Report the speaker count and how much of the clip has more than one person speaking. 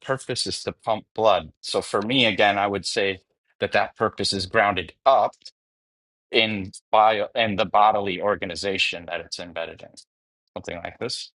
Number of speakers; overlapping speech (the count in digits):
1, no overlap